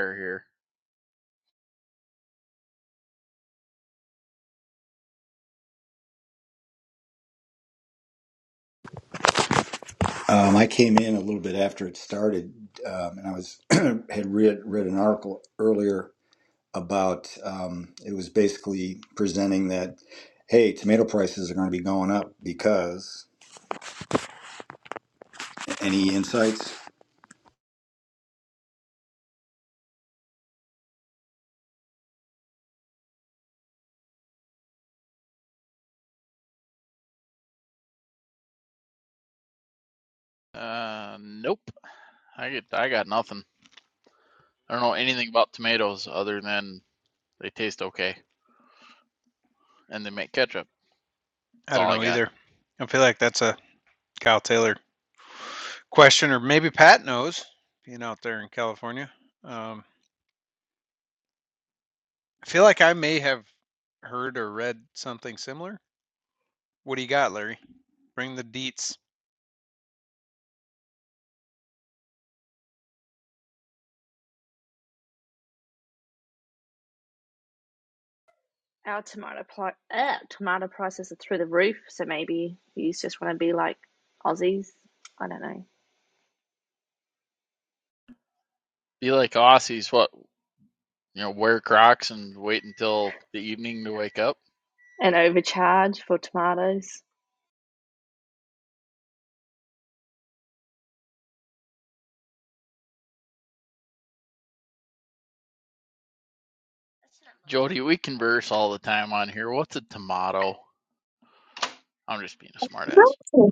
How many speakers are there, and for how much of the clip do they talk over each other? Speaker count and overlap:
4, about 1%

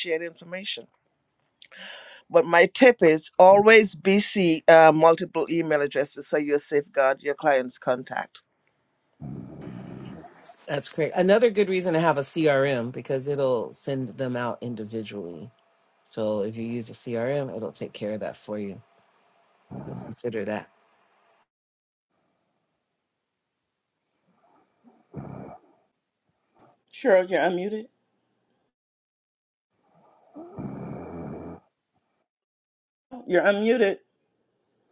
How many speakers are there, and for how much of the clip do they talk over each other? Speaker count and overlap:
3, no overlap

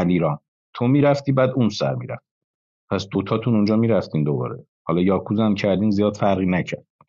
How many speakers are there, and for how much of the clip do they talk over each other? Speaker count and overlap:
1, no overlap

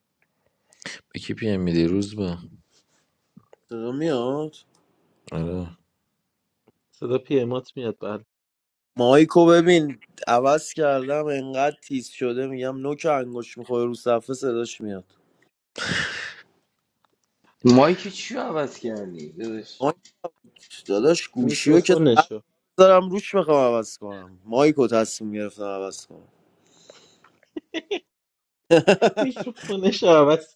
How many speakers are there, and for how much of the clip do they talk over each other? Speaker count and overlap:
4, about 2%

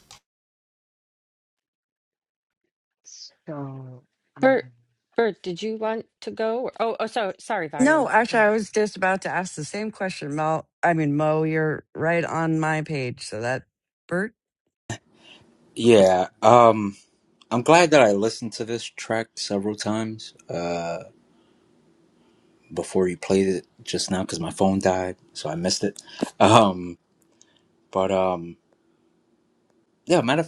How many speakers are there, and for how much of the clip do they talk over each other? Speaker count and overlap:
4, about 3%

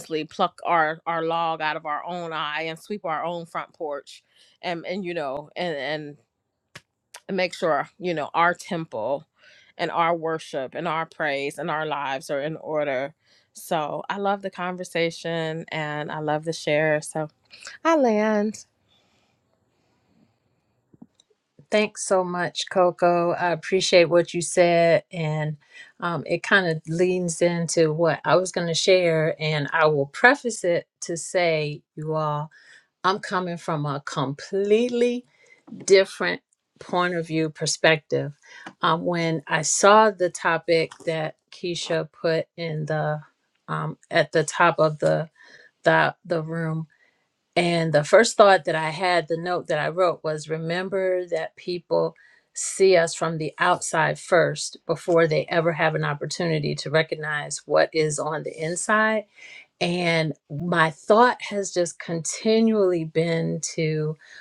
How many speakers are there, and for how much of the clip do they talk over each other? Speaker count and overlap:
2, no overlap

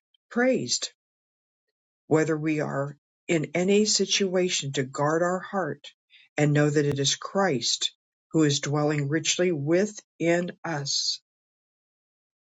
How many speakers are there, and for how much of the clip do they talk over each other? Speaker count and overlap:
1, no overlap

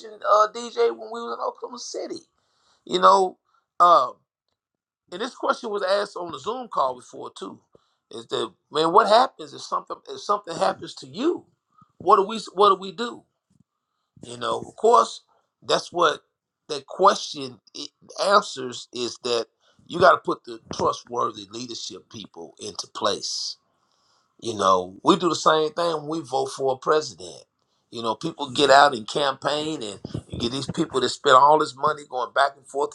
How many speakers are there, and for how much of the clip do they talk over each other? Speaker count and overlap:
1, no overlap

